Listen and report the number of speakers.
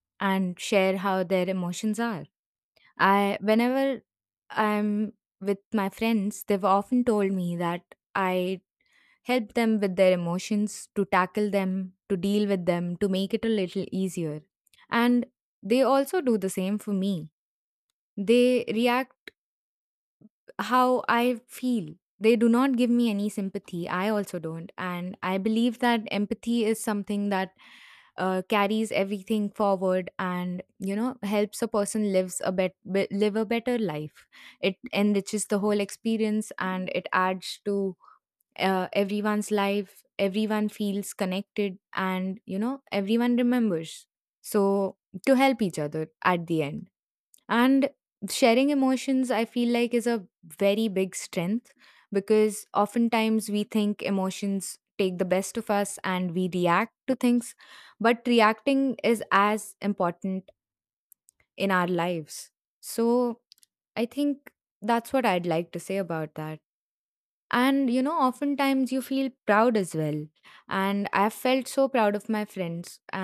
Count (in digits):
1